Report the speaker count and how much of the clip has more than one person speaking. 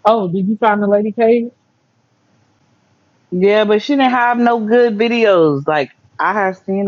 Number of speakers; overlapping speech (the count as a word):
two, no overlap